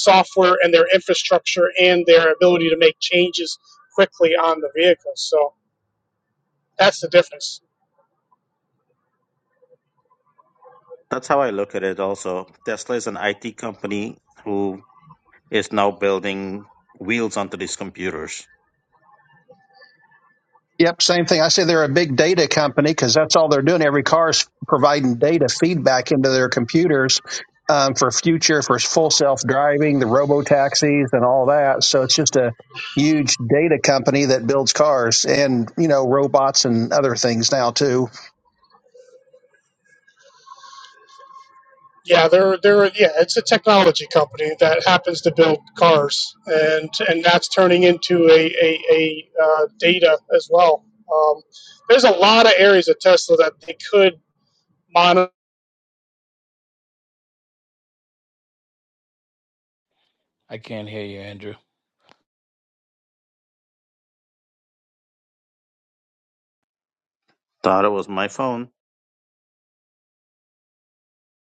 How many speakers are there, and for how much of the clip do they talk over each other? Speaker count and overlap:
4, no overlap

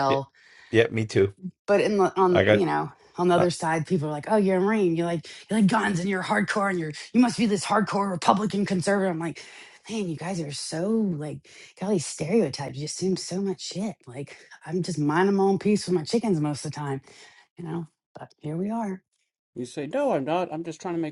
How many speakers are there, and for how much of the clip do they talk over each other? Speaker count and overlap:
3, about 3%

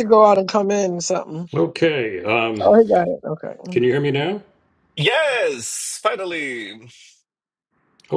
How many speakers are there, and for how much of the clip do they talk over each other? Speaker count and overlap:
3, about 3%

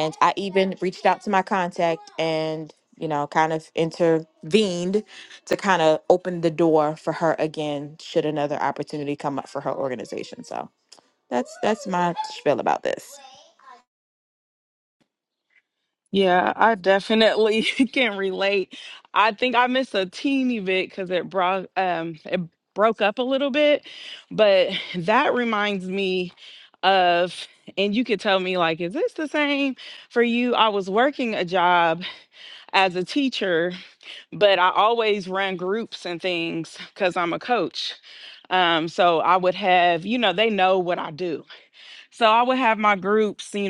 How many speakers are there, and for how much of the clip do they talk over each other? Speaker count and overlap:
2, no overlap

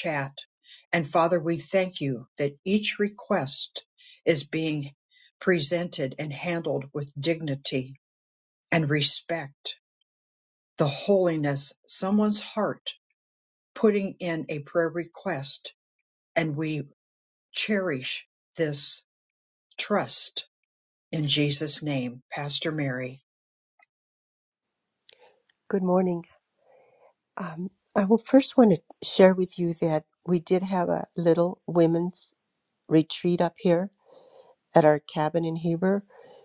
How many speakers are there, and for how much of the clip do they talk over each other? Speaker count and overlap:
2, no overlap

